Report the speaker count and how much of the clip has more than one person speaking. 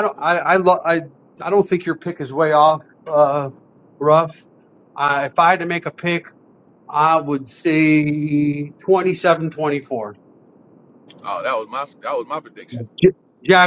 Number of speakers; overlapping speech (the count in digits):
2, about 1%